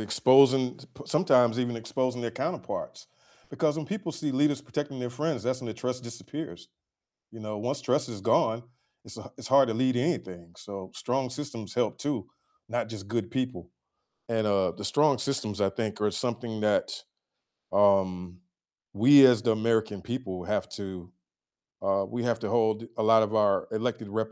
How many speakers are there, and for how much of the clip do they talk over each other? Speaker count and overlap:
1, no overlap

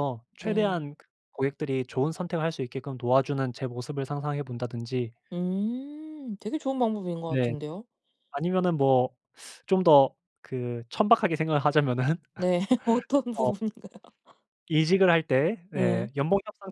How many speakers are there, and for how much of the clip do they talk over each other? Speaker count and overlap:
2, about 6%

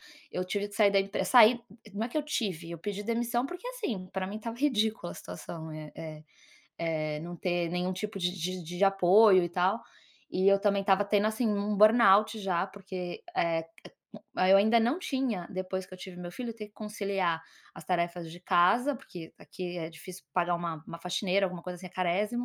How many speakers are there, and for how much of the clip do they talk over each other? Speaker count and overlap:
1, no overlap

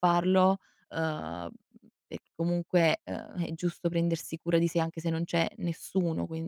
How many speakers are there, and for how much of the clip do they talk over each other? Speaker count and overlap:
1, no overlap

